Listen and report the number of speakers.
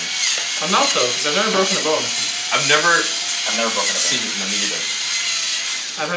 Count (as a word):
three